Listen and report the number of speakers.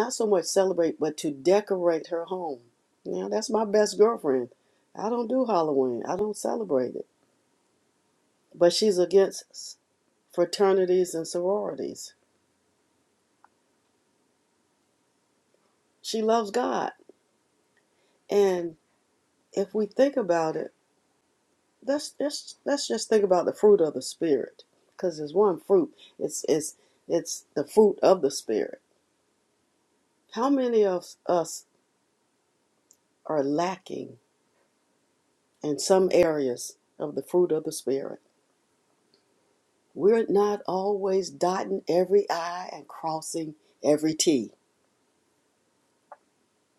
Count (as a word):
one